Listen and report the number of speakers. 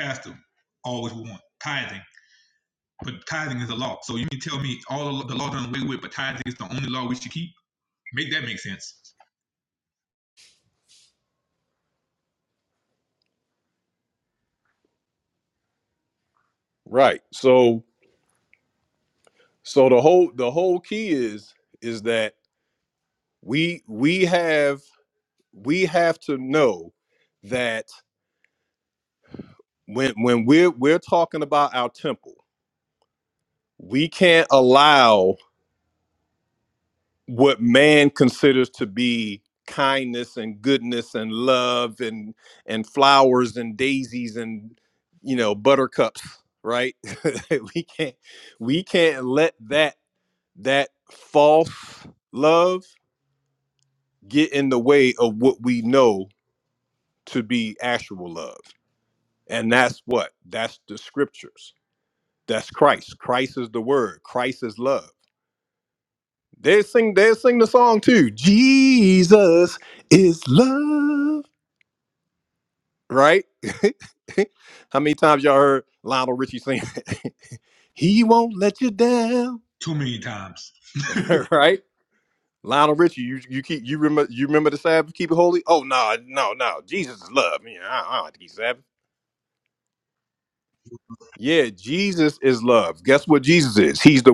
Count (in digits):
2